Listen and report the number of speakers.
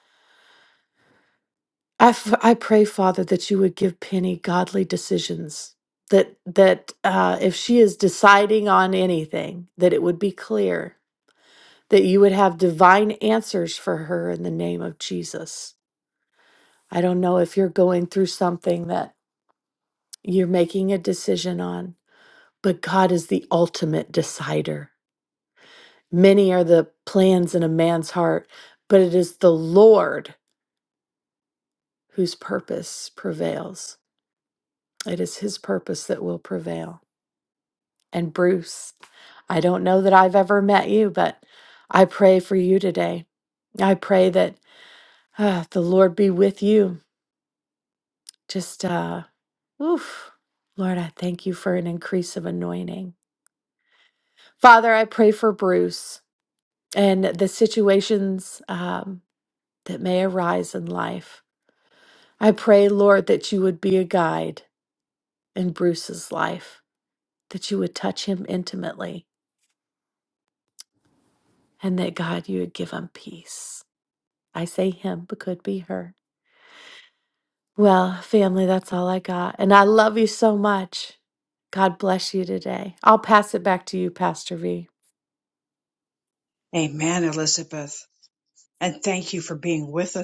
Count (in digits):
2